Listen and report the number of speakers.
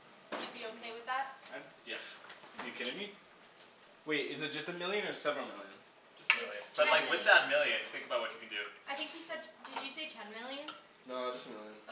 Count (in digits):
4